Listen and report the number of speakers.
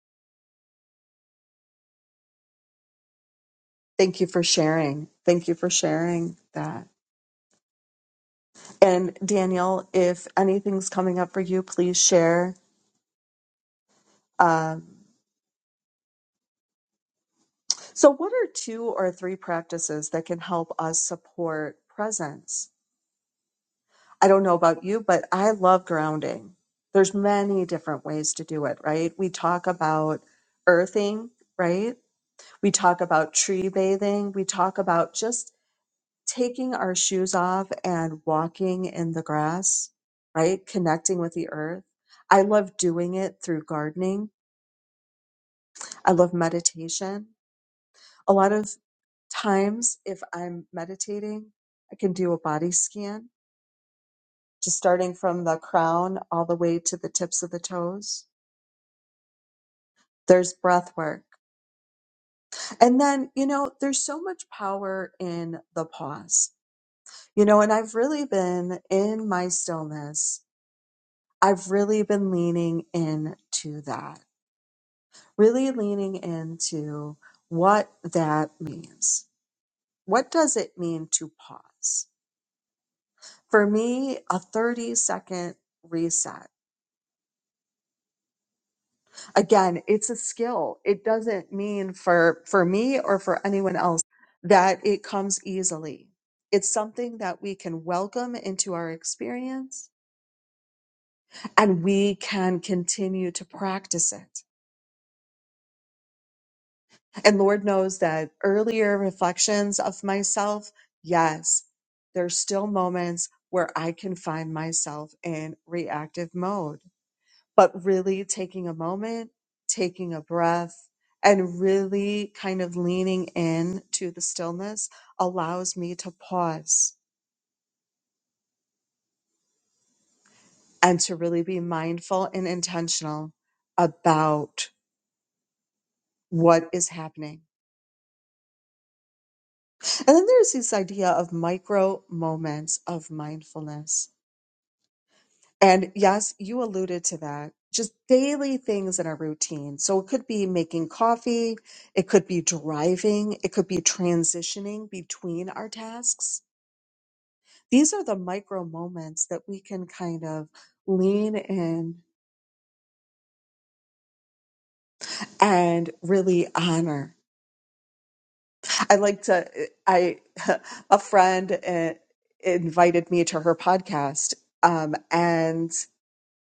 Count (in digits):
1